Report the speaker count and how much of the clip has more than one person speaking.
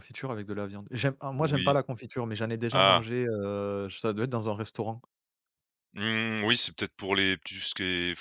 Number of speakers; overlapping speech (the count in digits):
2, about 9%